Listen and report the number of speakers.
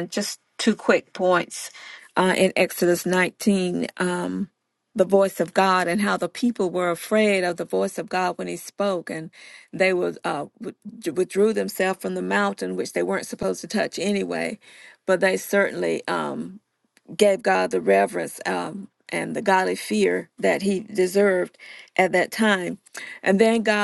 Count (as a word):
one